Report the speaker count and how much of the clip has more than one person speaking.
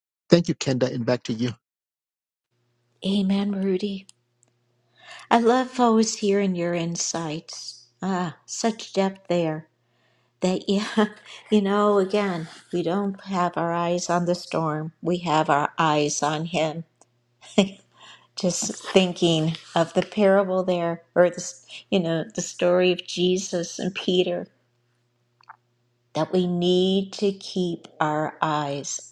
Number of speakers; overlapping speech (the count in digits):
2, no overlap